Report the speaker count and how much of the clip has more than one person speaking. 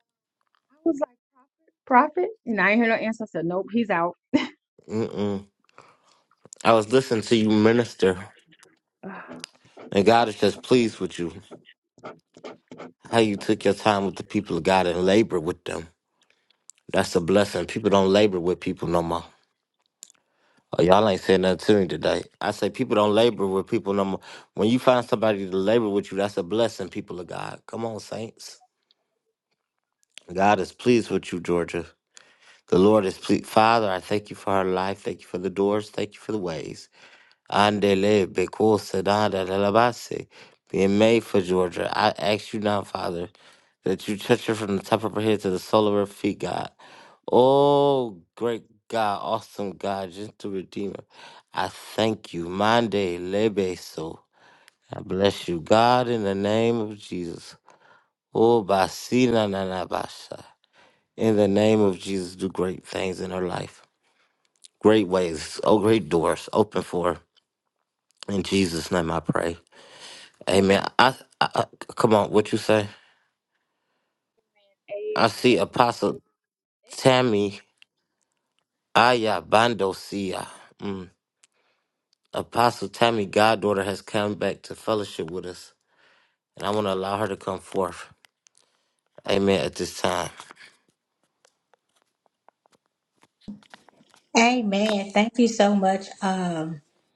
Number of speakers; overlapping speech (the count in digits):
3, under 1%